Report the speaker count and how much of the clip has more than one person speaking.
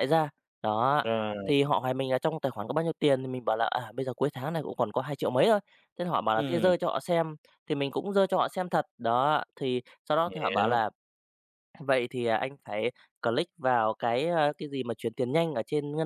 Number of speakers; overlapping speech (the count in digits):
2, about 6%